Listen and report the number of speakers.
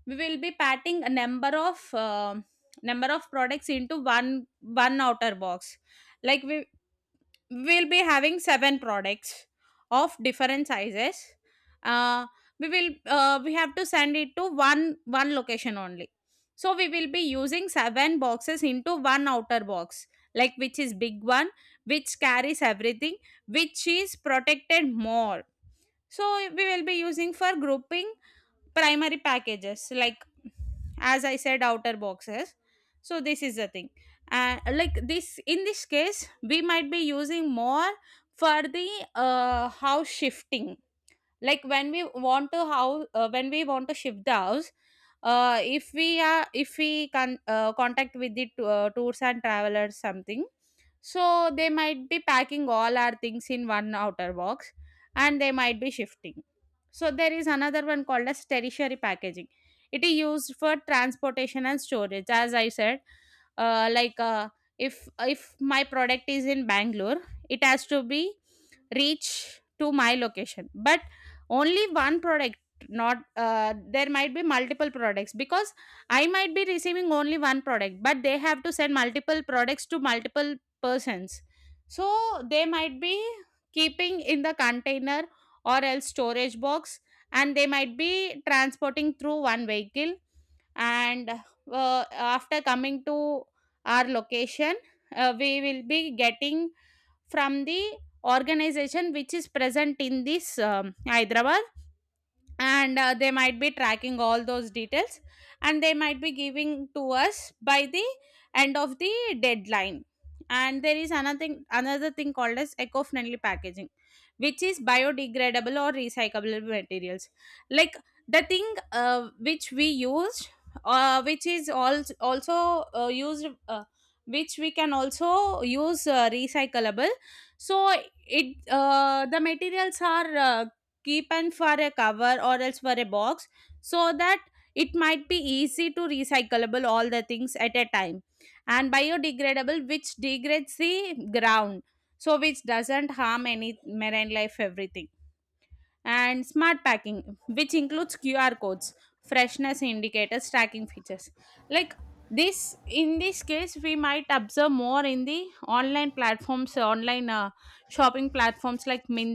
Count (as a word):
one